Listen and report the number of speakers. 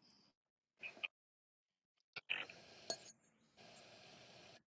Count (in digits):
0